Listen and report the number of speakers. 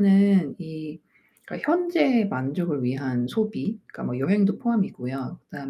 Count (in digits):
1